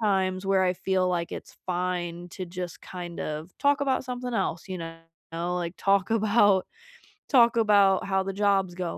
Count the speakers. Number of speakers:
1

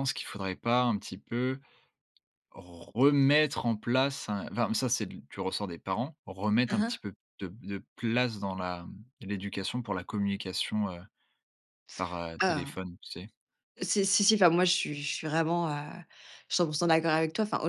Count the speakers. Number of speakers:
2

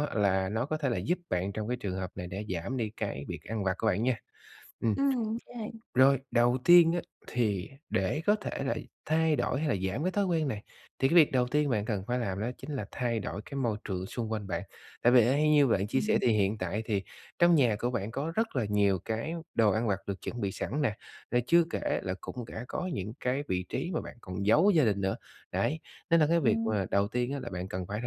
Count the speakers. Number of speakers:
2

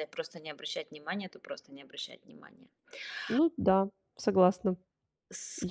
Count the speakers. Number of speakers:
2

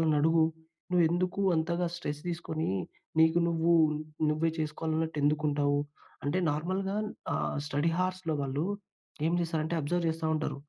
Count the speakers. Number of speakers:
1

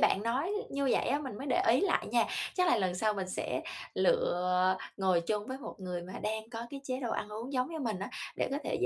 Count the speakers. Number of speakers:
1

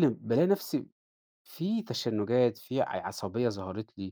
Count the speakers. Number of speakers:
1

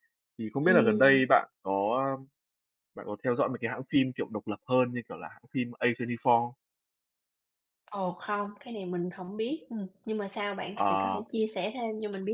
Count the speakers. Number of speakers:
2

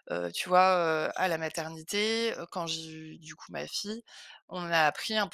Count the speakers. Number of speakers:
1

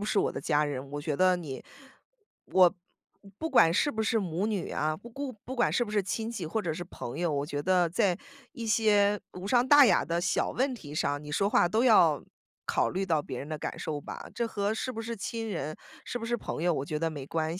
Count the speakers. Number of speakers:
1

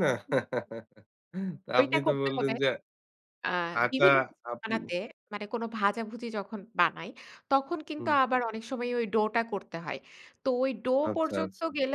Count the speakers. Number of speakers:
2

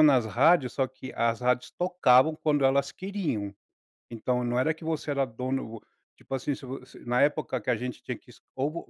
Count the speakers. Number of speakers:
1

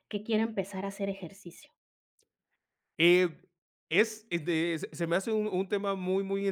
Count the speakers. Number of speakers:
2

